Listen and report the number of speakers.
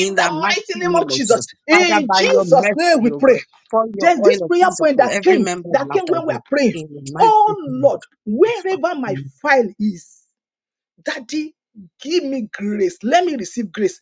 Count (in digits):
2